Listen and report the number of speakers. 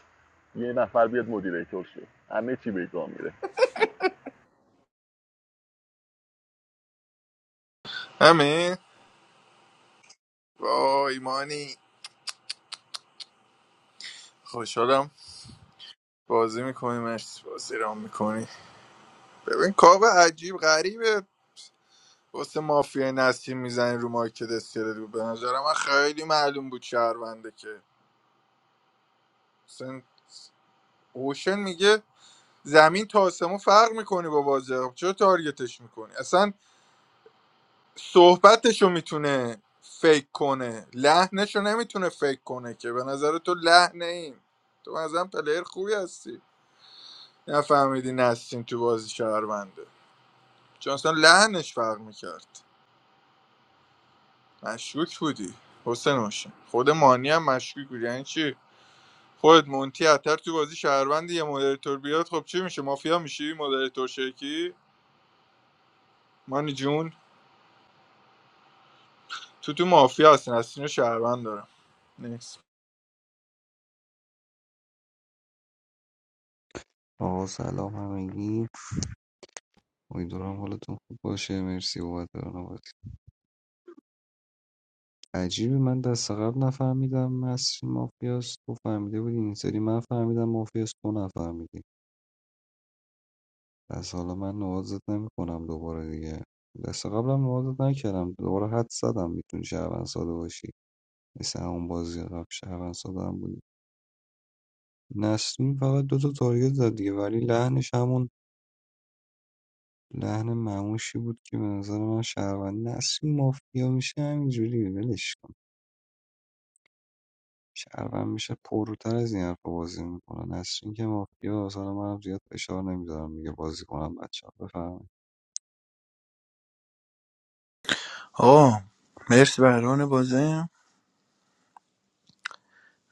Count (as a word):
four